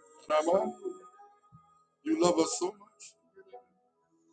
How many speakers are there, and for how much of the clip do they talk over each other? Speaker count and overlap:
1, no overlap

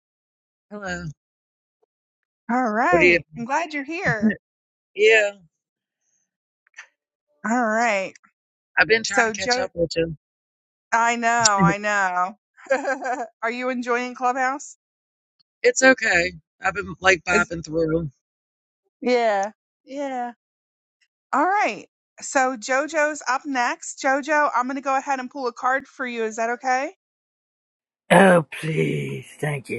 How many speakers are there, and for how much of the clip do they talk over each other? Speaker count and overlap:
3, about 3%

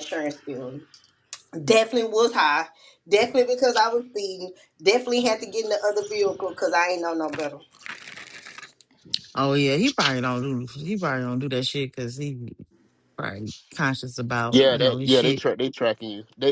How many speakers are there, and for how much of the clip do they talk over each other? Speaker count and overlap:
3, about 5%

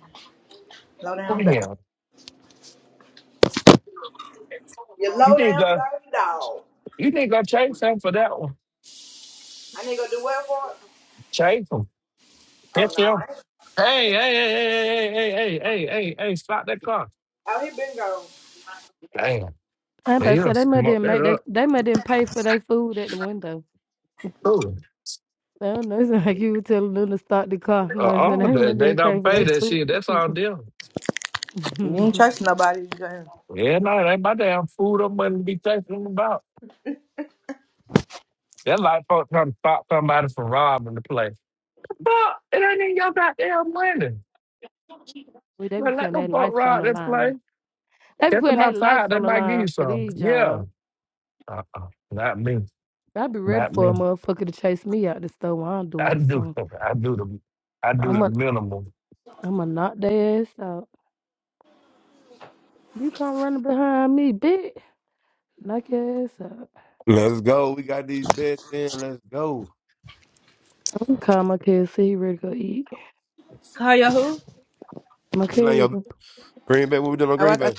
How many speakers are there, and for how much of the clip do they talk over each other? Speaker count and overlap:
4, about 13%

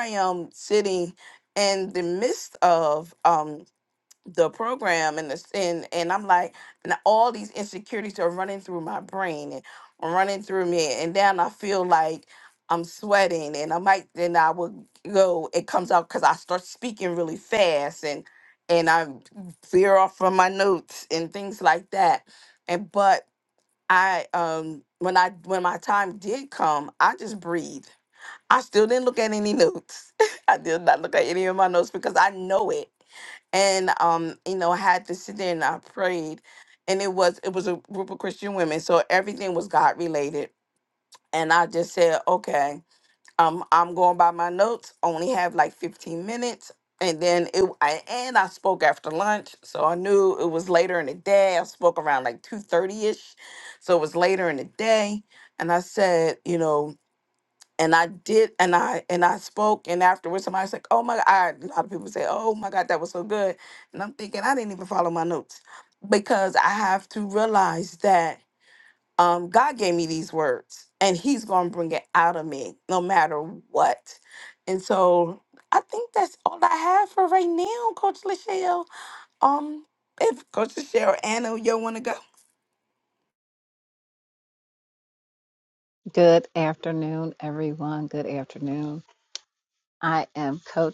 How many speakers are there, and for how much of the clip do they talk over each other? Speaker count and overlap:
2, no overlap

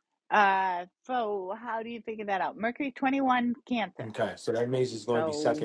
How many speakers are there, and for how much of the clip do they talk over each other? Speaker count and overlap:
2, about 10%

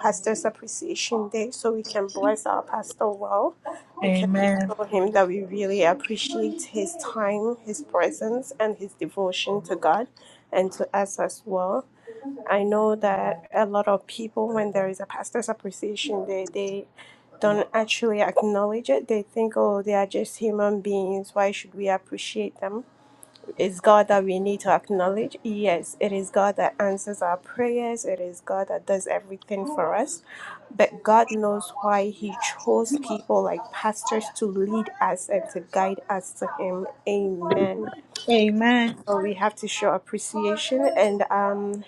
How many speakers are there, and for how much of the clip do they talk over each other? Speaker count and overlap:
2, about 1%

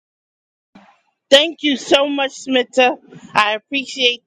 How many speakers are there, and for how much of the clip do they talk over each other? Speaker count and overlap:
1, no overlap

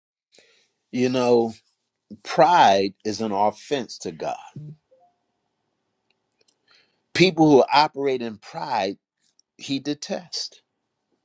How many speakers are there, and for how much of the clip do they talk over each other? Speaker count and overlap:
1, no overlap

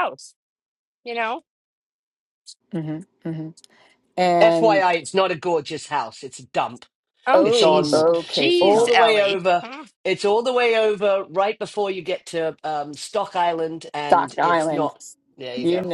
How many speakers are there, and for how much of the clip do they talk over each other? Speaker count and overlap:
3, about 24%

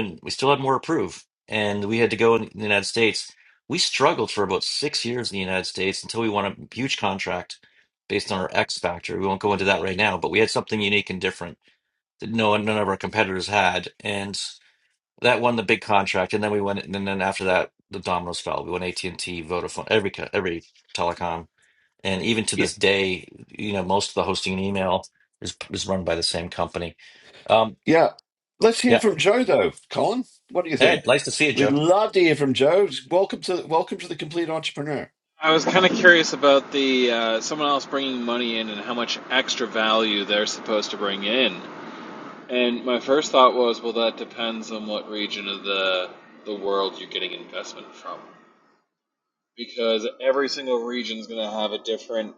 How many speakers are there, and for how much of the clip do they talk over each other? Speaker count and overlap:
3, about 1%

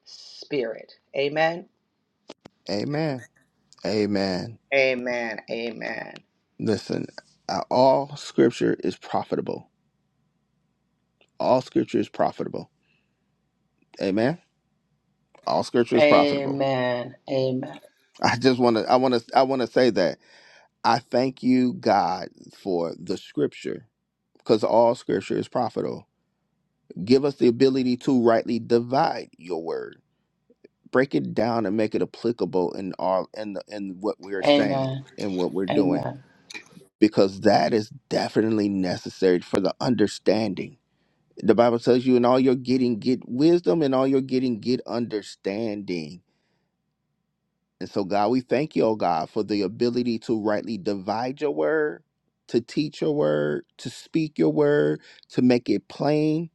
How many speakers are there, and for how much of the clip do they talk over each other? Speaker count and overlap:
2, about 2%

